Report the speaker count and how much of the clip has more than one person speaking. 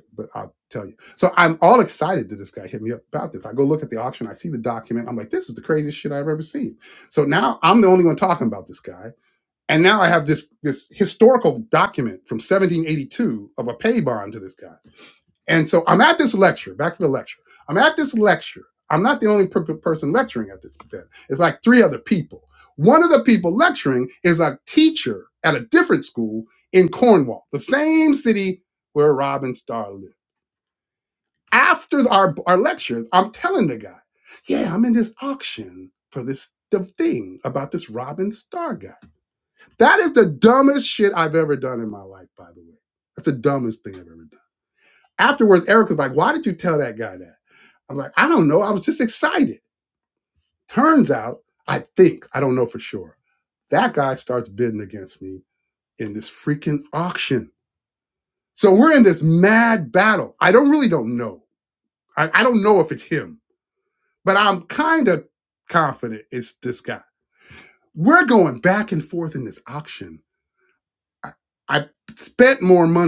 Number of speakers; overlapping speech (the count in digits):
1, no overlap